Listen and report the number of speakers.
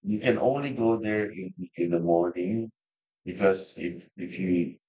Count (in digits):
1